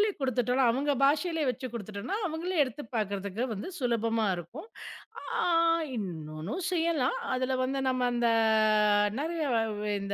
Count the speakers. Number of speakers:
one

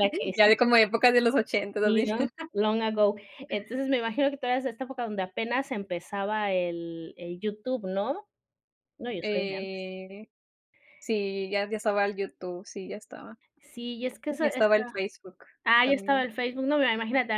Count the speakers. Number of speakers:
two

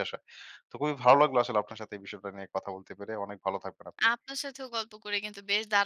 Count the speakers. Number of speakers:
two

